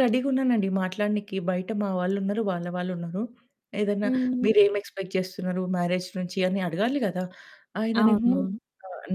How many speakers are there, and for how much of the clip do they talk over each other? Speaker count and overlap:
2, about 10%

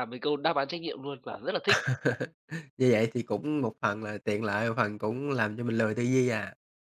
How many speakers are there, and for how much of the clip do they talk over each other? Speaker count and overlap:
2, no overlap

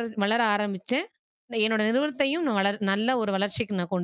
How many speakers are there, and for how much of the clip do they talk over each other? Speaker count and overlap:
1, no overlap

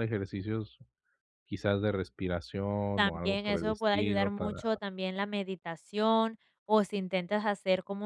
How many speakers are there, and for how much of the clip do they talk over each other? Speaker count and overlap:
2, about 22%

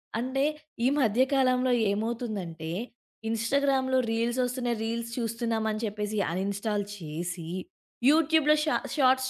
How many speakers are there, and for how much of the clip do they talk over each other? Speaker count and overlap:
1, no overlap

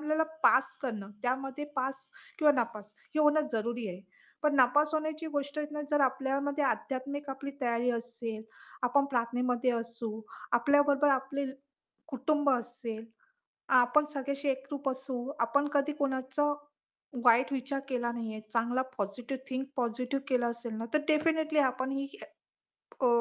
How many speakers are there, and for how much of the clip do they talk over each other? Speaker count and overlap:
1, no overlap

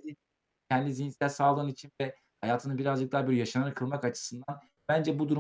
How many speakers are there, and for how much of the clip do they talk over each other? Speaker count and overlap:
1, no overlap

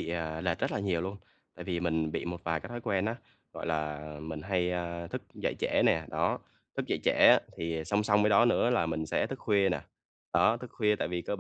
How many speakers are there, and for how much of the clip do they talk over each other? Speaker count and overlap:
1, no overlap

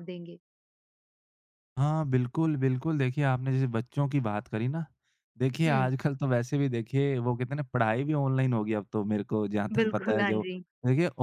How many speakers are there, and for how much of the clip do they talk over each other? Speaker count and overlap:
2, about 9%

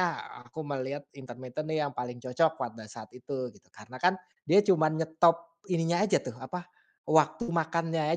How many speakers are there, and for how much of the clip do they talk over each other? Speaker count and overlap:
1, no overlap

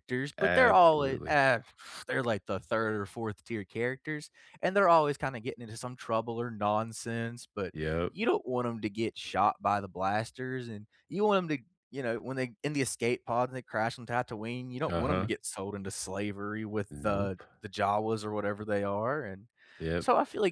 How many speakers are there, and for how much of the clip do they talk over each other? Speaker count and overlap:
2, about 9%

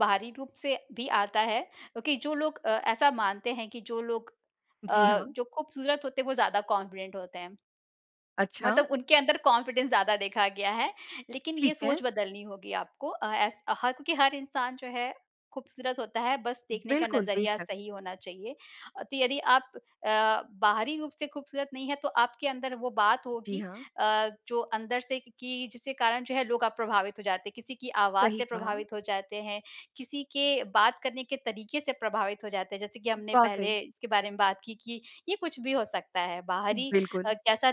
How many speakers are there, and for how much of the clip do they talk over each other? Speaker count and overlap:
2, about 10%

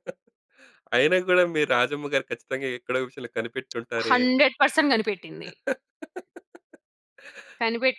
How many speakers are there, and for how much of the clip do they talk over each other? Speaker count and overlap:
2, about 3%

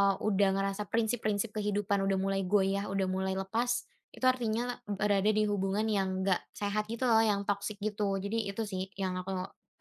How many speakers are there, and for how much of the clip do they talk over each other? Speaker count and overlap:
1, no overlap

